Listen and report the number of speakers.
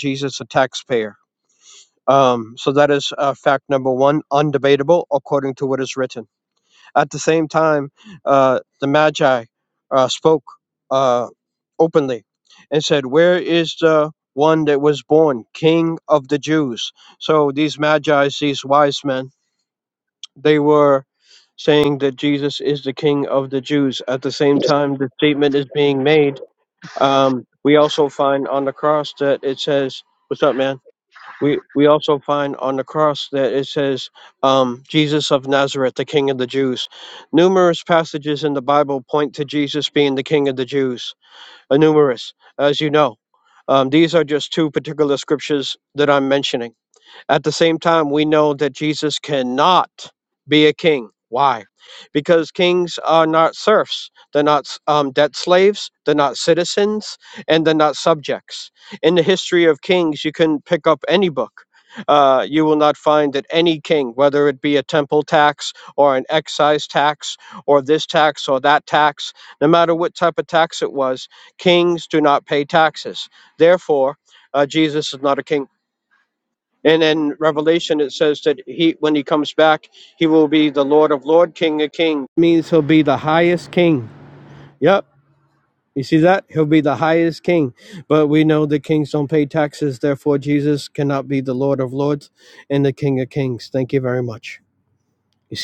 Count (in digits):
1